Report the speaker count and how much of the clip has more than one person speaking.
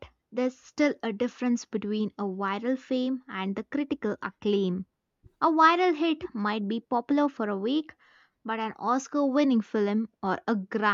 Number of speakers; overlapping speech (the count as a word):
one, no overlap